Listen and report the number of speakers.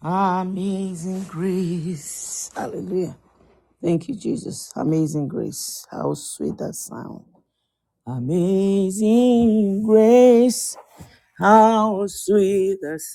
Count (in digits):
1